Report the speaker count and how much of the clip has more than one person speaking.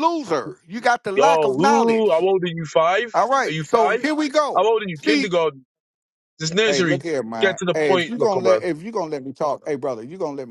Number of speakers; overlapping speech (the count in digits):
2, about 34%